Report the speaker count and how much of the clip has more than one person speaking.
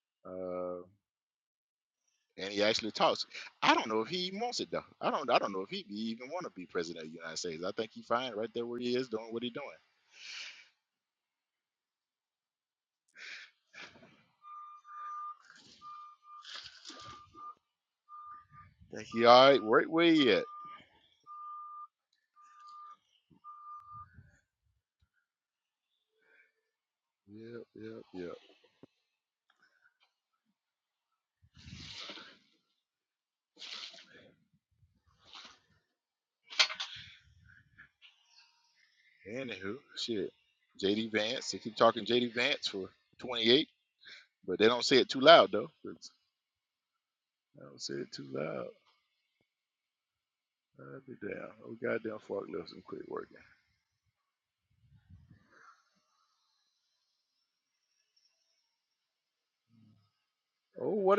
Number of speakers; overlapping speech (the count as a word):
one, no overlap